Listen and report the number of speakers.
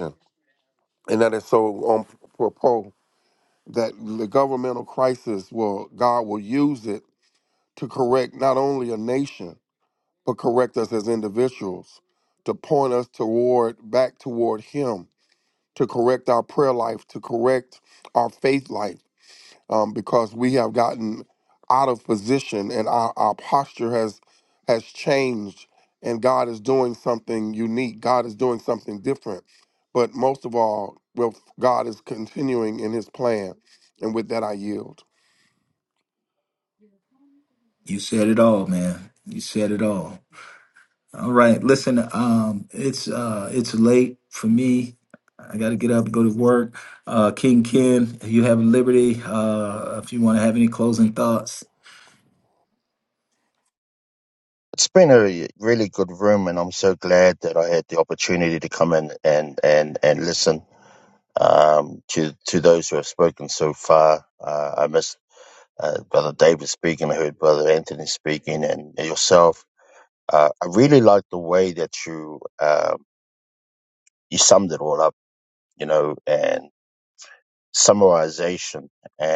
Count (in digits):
3